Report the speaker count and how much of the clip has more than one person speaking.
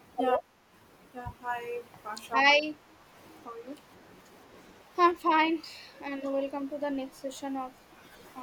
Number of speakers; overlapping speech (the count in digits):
2, about 5%